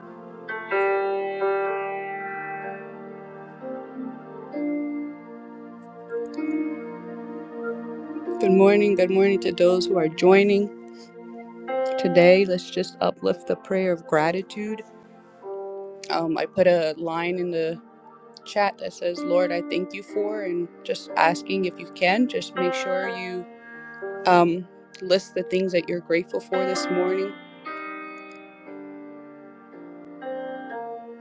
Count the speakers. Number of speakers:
1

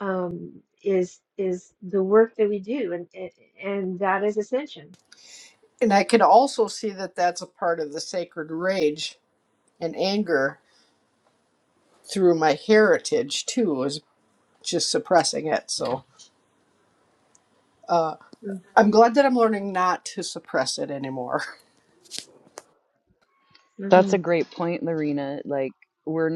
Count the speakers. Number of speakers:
3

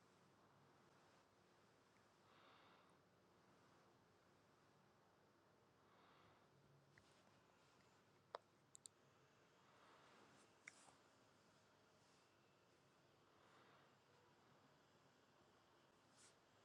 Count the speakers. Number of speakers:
0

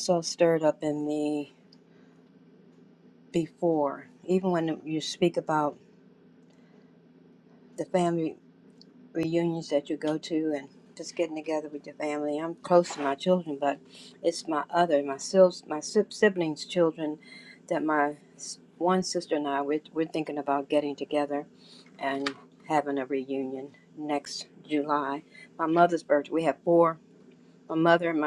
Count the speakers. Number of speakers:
1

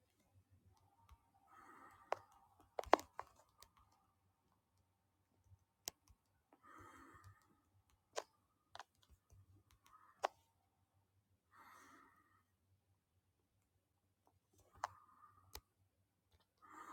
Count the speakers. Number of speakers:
0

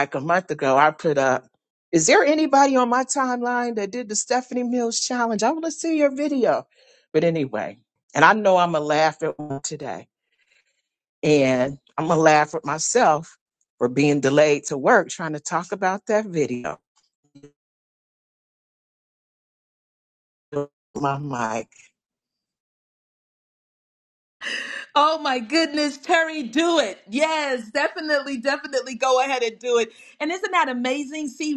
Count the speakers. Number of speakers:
2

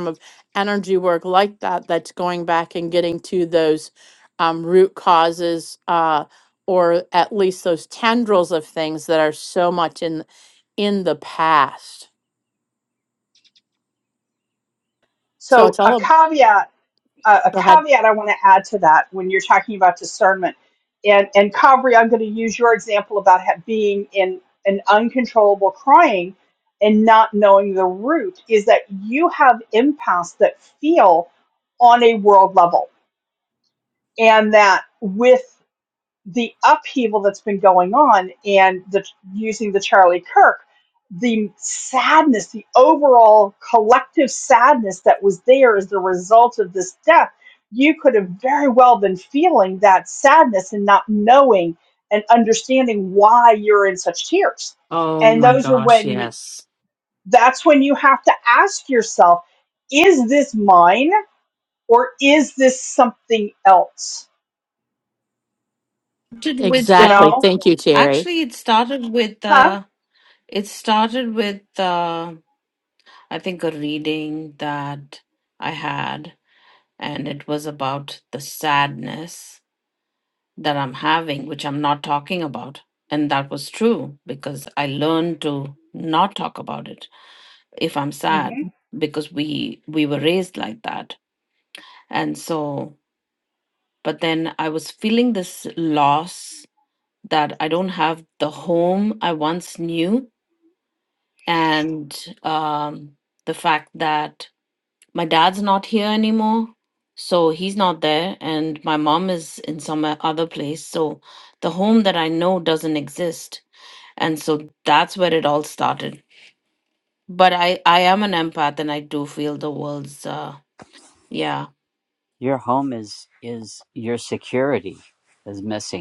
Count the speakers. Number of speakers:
4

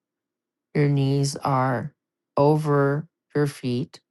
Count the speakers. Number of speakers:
1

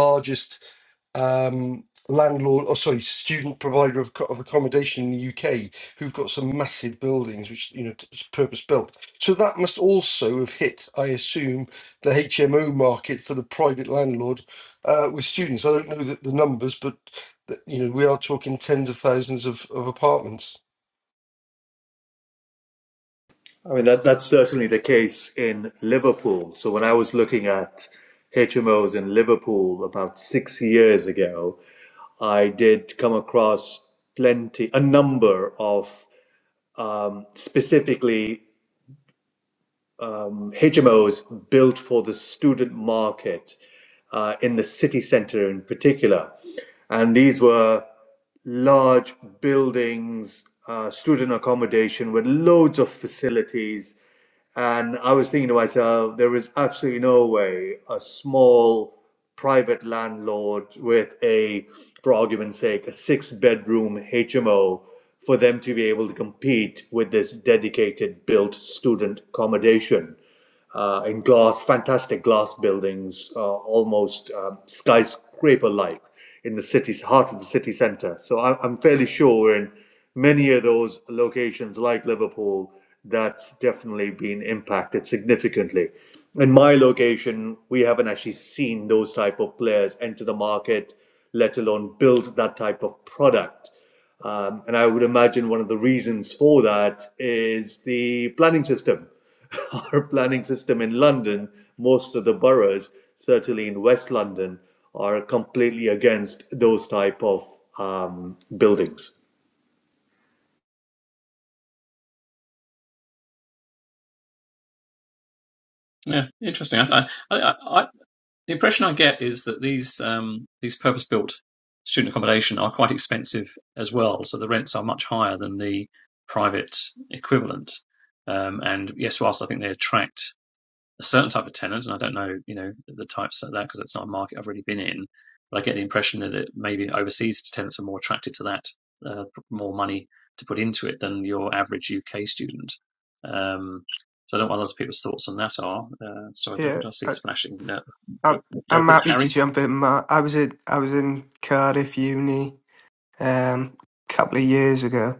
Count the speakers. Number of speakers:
4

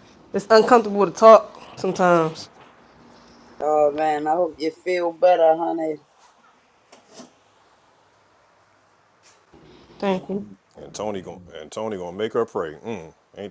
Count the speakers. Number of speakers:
3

